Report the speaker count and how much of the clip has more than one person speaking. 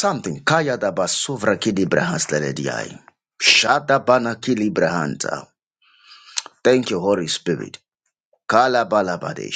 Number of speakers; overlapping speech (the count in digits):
1, no overlap